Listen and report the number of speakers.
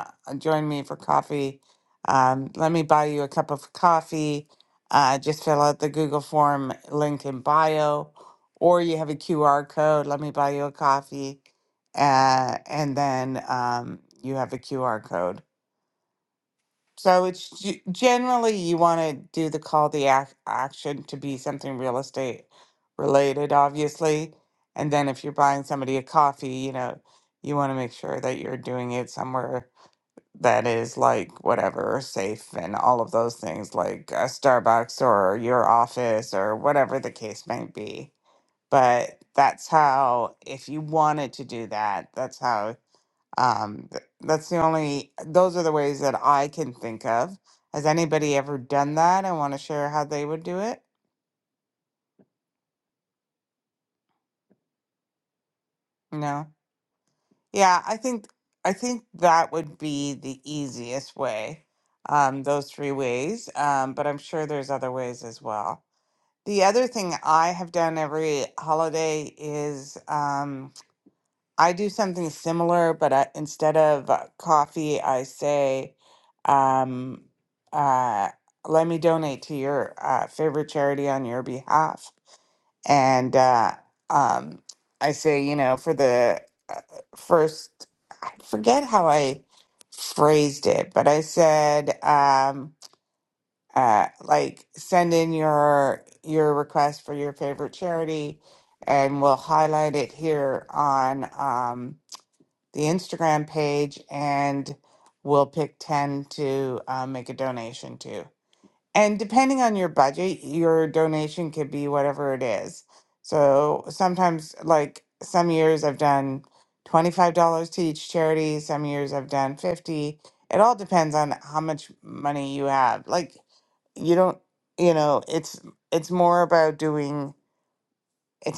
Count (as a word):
one